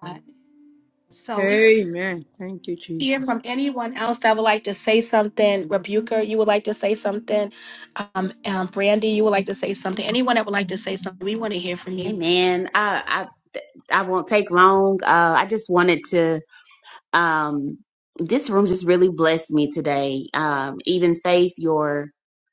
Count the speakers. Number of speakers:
3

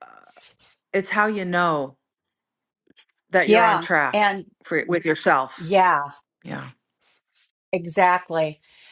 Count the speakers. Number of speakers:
2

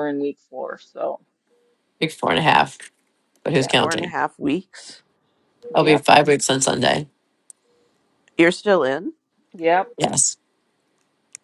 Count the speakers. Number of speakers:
3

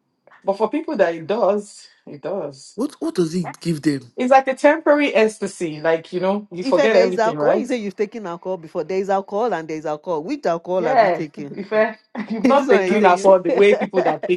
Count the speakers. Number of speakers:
3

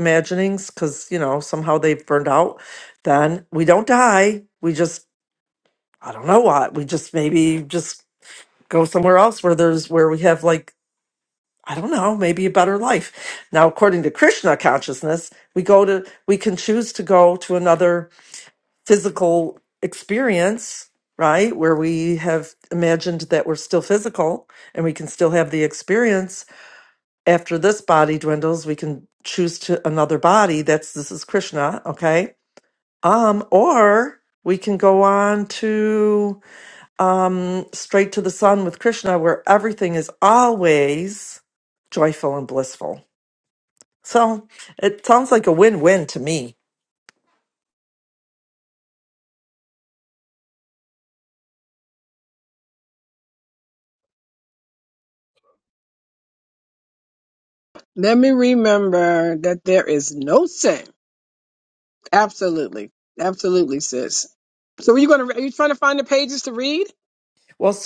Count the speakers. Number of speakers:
2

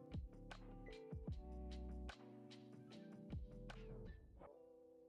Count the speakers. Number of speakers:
0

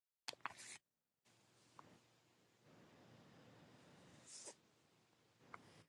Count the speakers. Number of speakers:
0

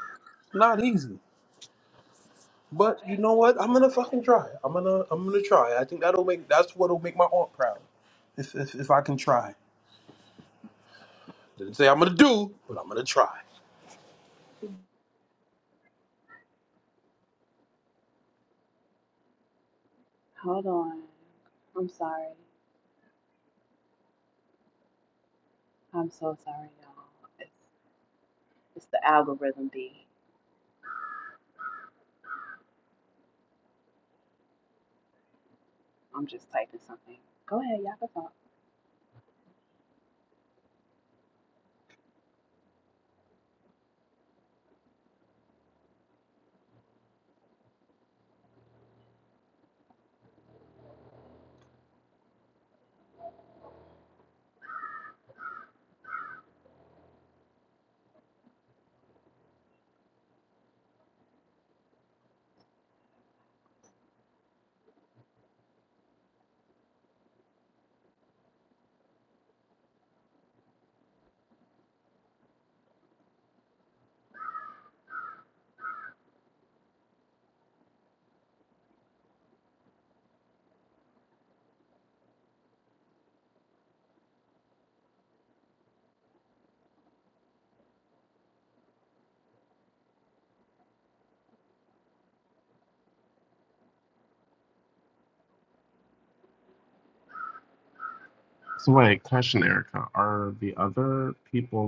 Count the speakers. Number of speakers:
3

